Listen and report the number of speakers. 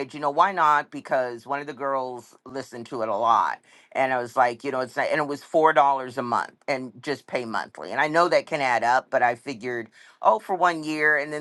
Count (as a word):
one